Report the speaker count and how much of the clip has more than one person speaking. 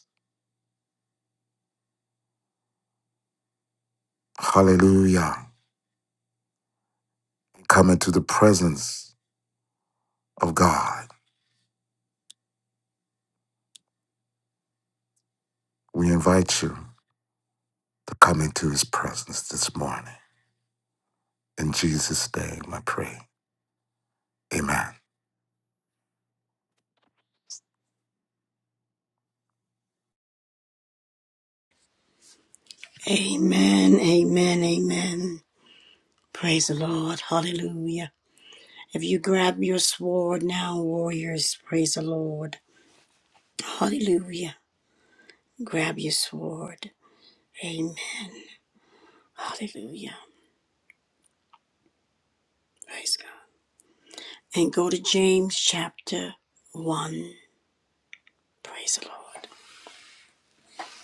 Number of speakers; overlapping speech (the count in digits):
2, no overlap